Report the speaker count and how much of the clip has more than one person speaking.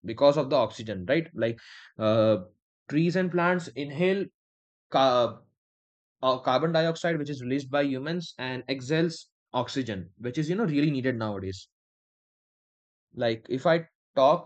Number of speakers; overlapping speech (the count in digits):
1, no overlap